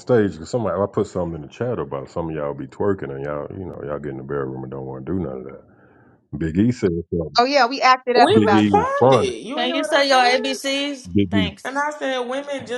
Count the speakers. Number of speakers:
4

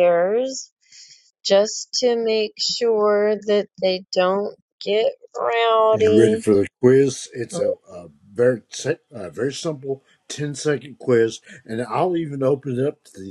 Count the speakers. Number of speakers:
2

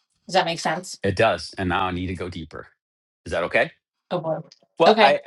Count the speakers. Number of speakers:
2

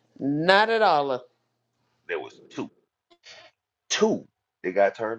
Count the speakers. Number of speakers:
2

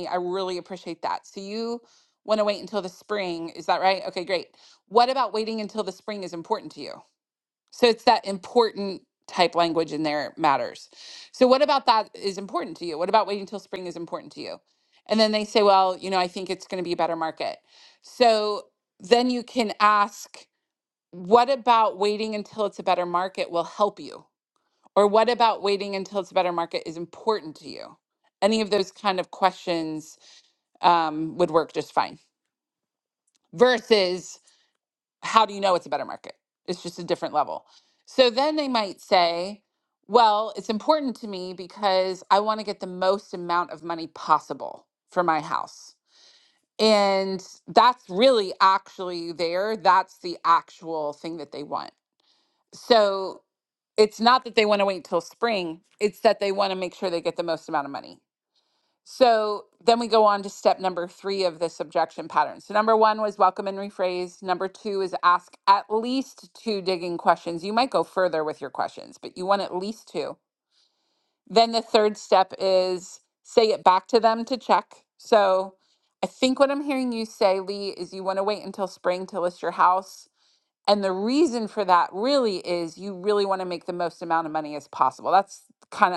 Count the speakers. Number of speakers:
1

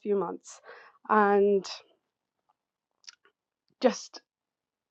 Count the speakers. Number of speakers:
1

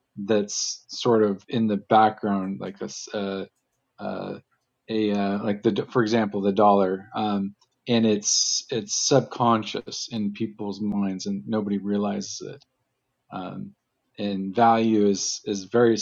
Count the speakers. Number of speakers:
1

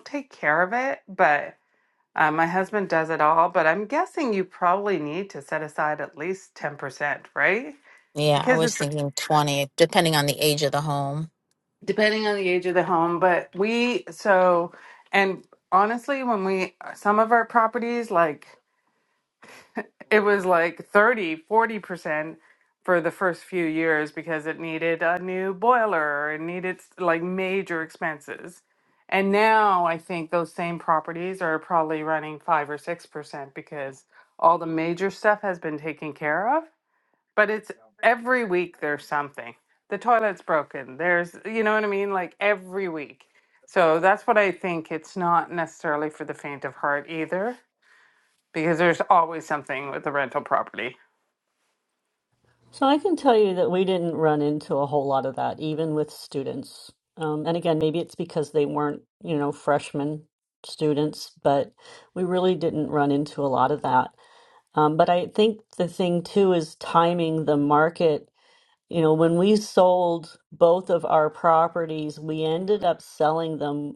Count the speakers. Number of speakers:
3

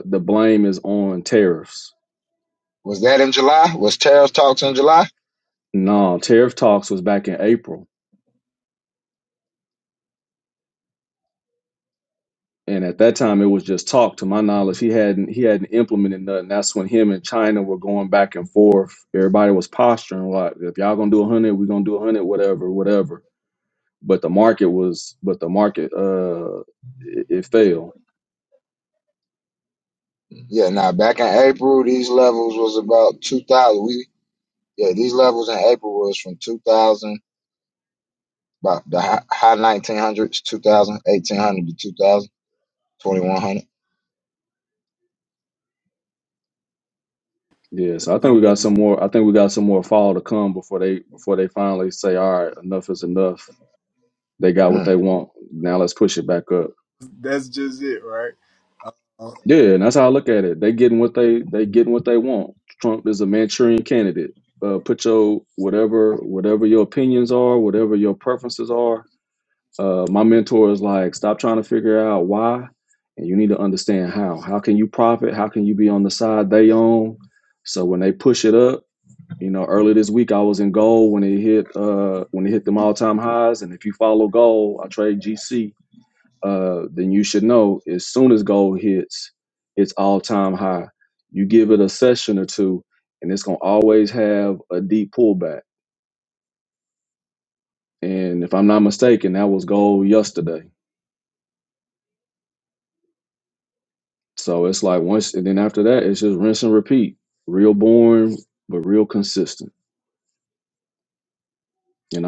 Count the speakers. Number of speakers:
3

